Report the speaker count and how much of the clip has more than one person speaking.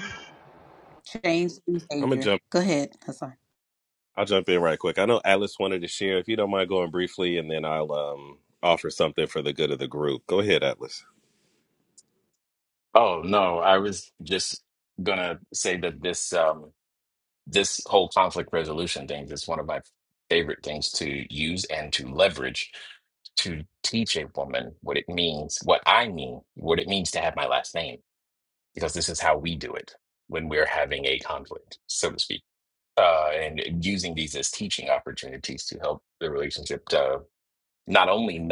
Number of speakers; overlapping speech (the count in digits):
3, about 1%